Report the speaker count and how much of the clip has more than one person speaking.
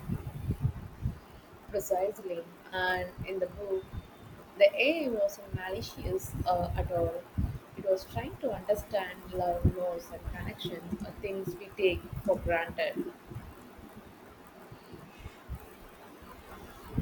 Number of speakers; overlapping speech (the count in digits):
1, no overlap